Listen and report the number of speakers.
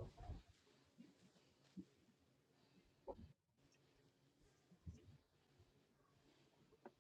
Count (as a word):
zero